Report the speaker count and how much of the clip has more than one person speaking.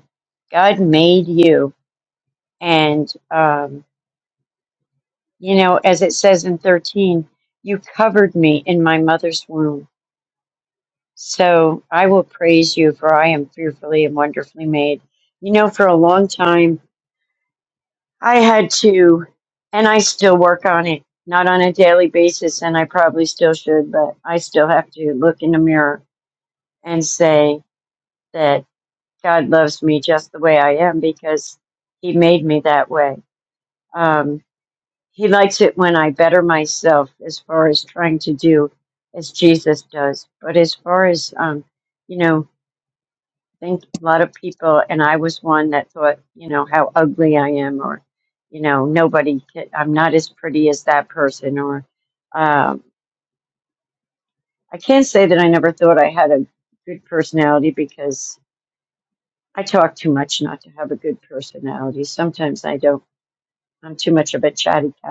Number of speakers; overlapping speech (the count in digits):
1, no overlap